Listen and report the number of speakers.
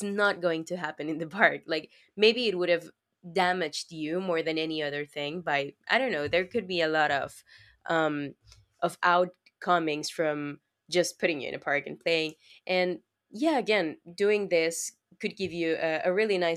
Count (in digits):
1